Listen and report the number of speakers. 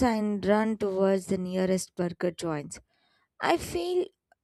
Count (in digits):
1